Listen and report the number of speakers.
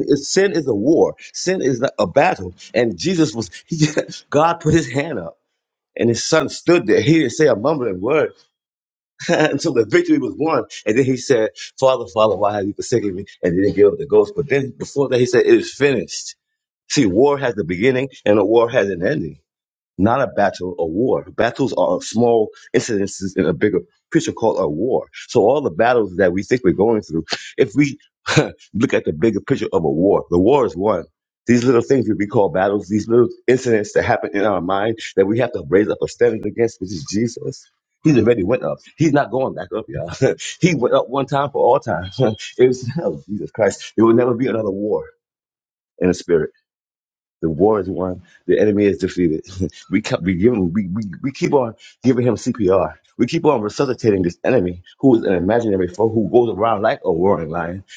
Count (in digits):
1